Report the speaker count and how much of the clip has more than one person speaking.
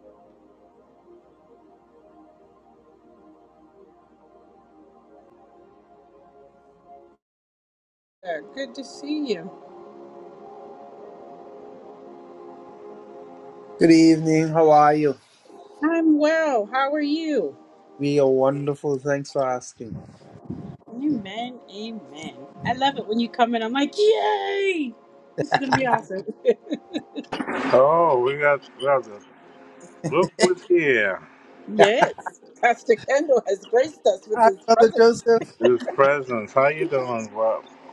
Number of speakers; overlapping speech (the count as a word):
three, about 2%